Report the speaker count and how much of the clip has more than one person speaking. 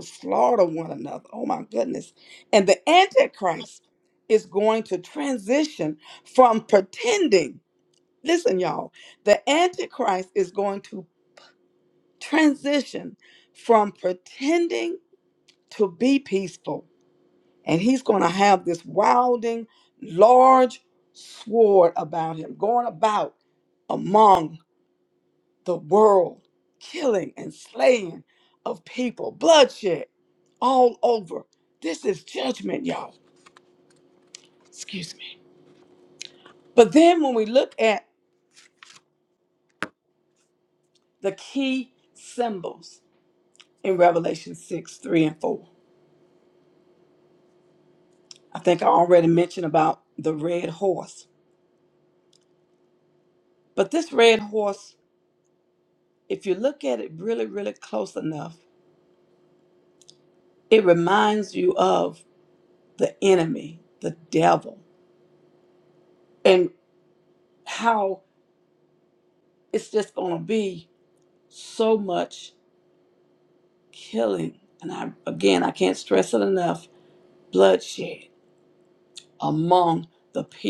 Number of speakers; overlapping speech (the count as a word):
one, no overlap